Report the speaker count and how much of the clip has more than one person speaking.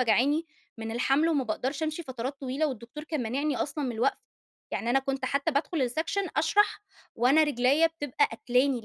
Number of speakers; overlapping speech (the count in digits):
1, no overlap